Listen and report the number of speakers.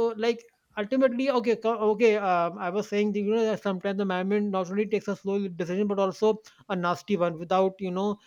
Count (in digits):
1